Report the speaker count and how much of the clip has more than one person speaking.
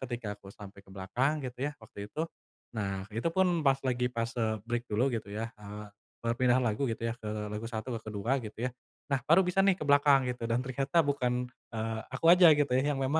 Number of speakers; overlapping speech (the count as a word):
one, no overlap